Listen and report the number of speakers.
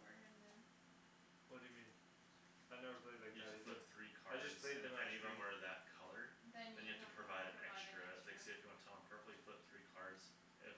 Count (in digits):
3